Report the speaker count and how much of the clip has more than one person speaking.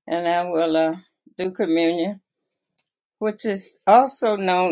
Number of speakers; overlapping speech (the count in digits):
1, no overlap